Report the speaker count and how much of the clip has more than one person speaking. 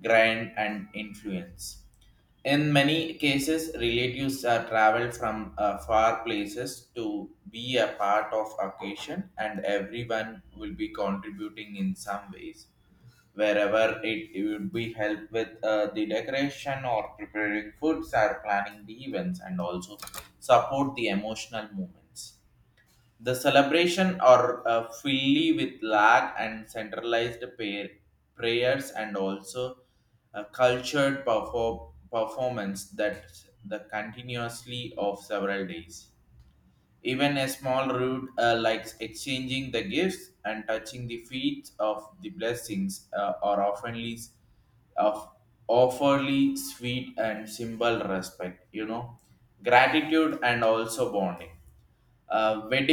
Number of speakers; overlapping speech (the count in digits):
1, no overlap